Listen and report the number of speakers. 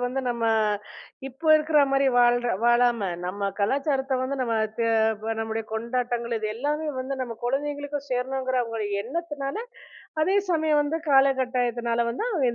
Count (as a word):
one